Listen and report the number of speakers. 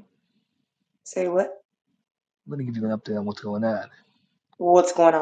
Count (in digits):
2